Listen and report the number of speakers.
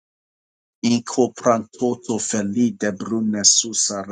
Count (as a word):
one